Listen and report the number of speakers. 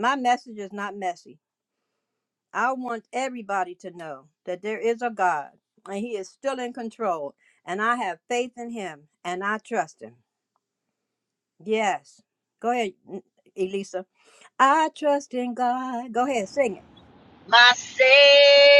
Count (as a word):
two